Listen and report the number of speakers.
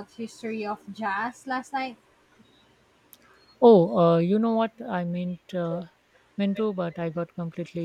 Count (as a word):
two